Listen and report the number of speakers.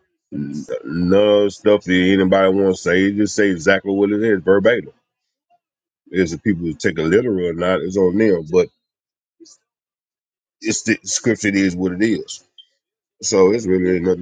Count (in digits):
1